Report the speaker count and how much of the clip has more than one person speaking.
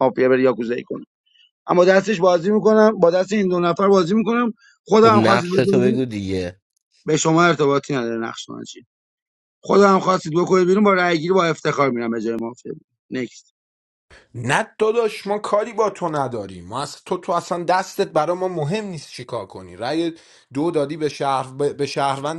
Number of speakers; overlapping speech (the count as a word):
three, about 4%